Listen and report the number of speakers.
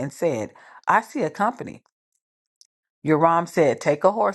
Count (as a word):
one